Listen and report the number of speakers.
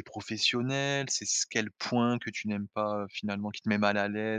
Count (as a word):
one